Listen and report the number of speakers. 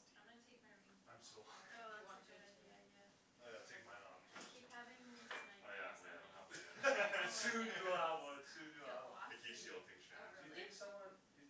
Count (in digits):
4